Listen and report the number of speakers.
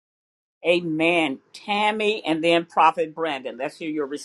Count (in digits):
1